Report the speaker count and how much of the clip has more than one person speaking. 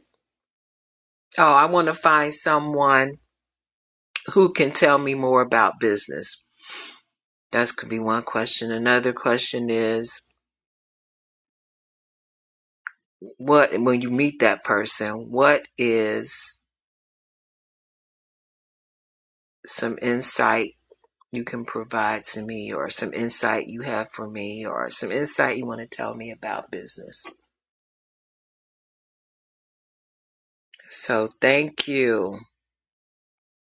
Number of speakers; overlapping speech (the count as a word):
one, no overlap